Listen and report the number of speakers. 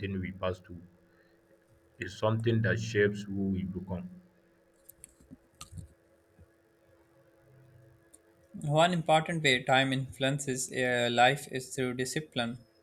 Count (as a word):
two